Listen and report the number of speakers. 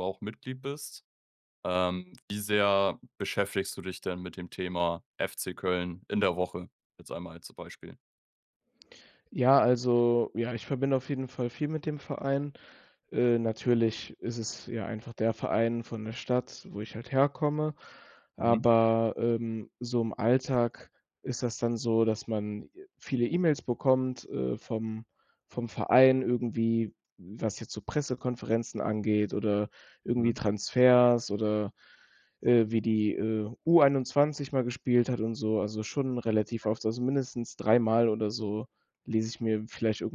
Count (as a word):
two